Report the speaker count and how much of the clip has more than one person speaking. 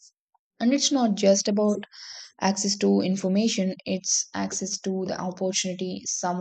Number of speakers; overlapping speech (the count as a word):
one, no overlap